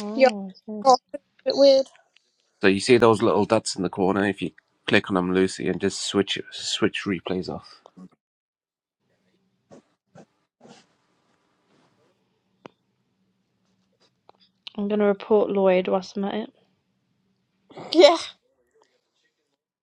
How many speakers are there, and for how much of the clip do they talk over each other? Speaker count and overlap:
three, about 1%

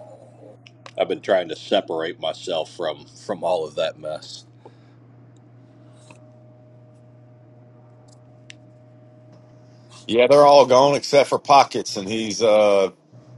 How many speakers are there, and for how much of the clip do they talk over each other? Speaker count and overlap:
two, no overlap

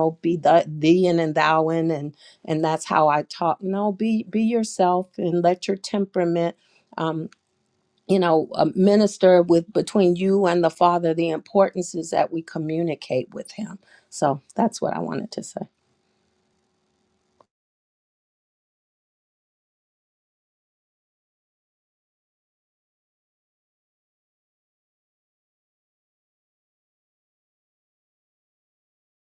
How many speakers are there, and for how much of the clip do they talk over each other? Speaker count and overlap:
one, no overlap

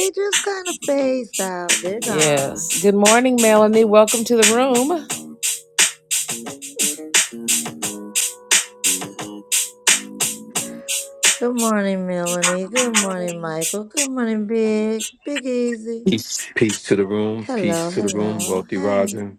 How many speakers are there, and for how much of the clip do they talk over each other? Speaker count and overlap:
three, about 12%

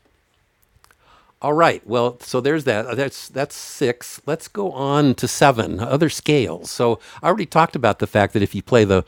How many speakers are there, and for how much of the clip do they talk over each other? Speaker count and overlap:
one, no overlap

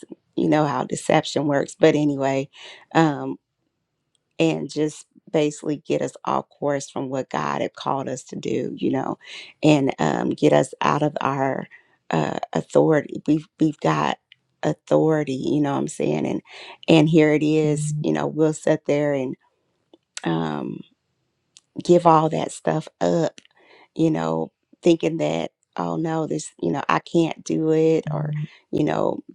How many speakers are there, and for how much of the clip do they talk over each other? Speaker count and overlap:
one, no overlap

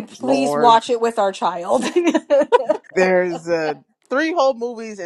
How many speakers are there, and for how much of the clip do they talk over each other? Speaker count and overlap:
three, about 15%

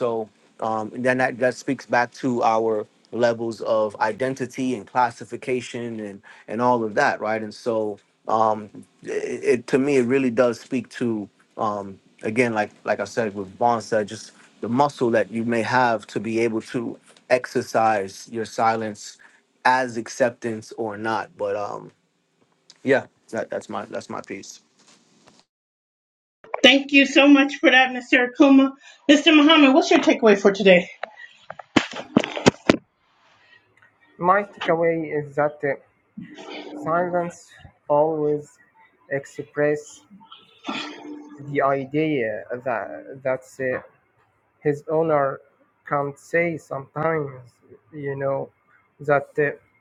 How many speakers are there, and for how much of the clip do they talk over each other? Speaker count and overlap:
three, no overlap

